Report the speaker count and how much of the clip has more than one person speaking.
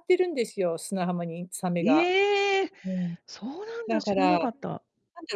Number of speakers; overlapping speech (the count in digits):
2, about 16%